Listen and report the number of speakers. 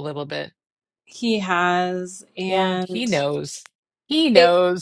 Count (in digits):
2